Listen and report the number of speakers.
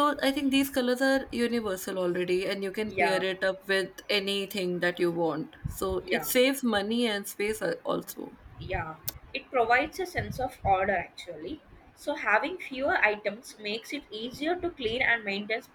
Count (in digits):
2